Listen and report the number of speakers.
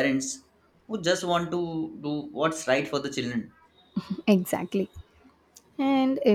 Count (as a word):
two